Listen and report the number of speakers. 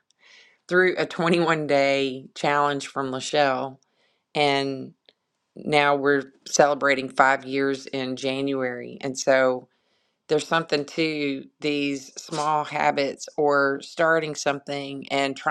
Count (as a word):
one